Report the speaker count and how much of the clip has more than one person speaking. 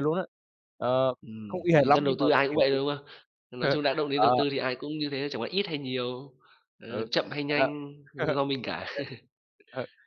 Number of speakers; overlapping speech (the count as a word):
two, about 20%